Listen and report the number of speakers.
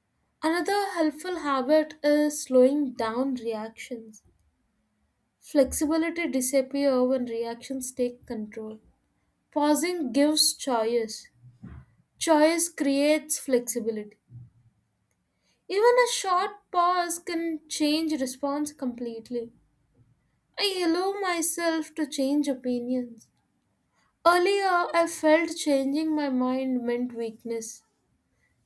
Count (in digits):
1